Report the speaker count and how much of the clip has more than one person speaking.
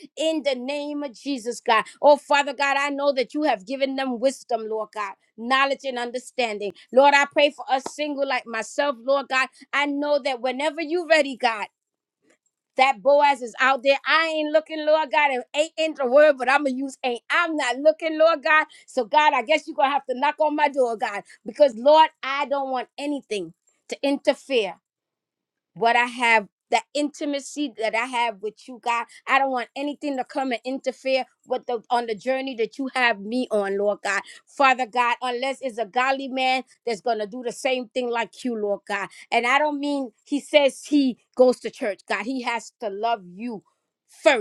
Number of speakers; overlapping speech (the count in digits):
1, no overlap